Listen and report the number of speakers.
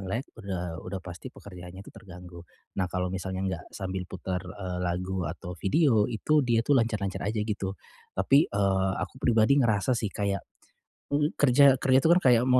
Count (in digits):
1